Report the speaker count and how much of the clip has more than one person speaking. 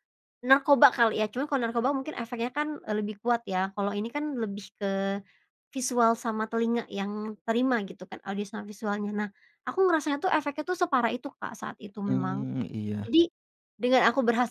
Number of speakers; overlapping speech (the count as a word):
two, about 3%